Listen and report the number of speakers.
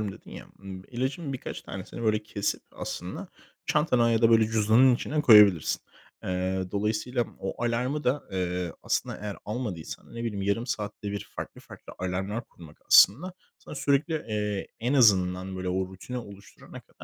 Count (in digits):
1